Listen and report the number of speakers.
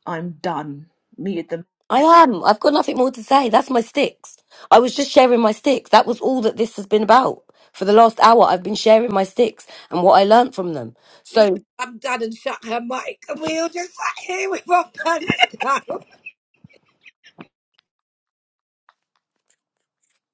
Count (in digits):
3